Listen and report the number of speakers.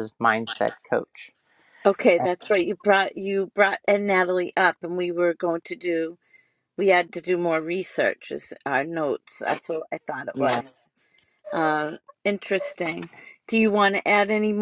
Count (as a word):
two